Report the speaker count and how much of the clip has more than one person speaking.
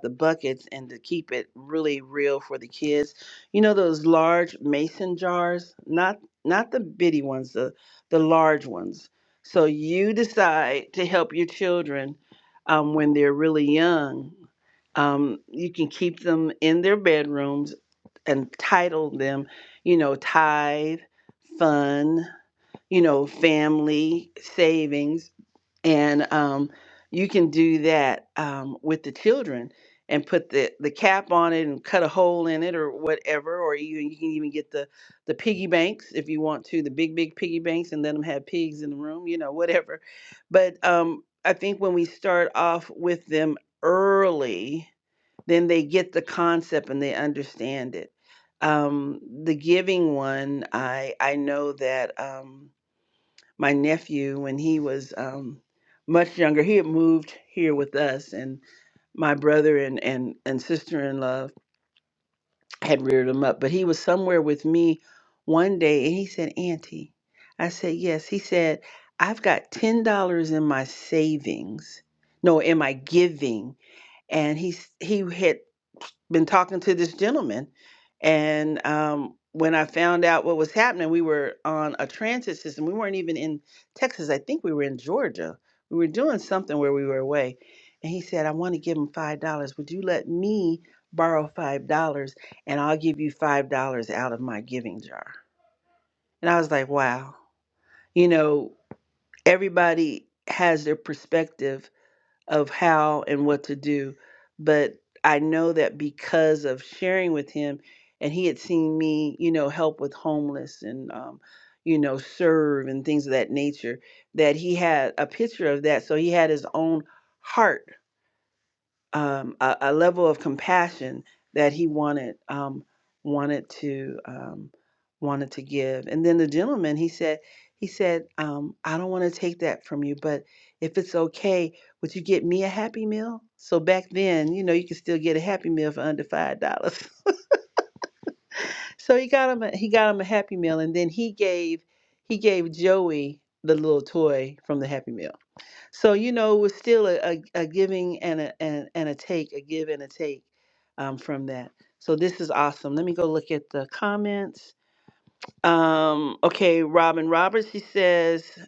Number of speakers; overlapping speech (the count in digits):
1, no overlap